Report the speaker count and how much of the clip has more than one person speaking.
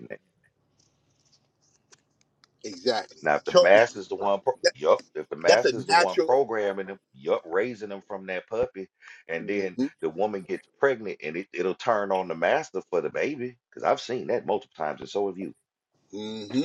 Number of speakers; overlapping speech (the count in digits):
2, about 12%